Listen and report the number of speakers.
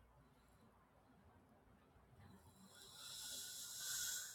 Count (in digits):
0